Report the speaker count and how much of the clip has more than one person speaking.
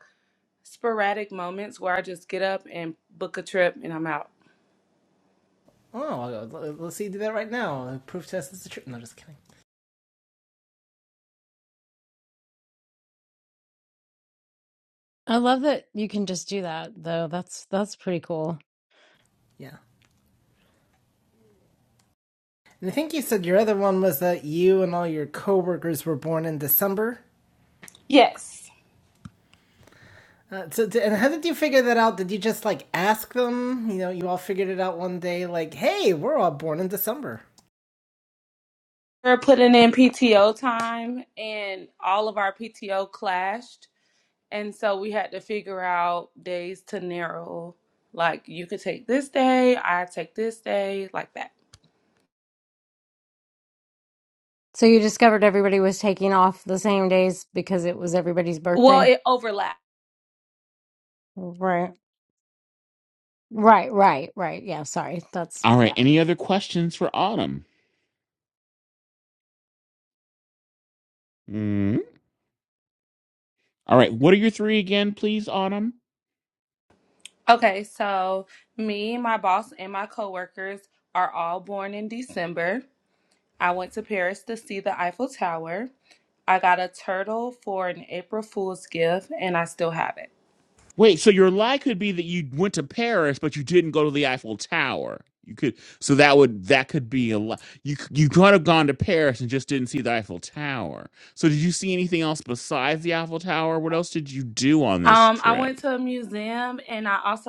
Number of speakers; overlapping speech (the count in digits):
4, about 1%